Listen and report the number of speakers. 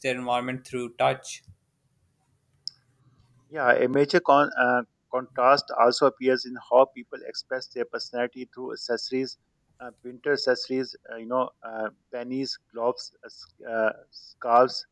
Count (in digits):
2